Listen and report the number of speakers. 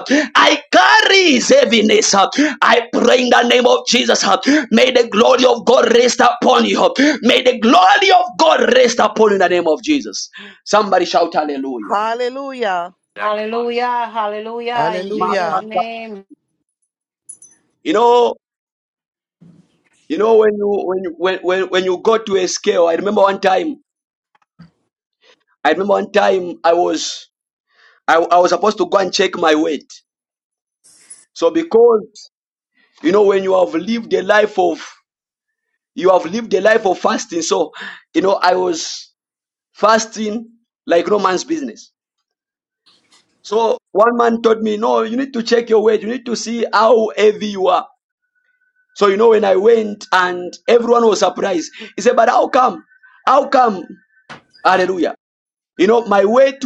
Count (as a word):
three